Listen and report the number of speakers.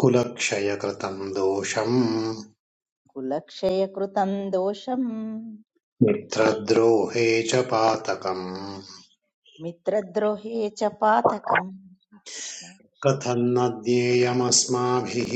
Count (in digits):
2